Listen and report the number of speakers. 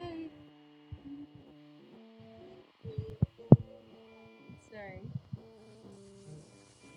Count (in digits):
0